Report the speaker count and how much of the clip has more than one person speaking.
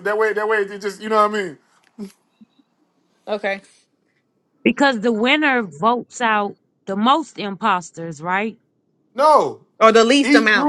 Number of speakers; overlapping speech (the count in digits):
3, about 4%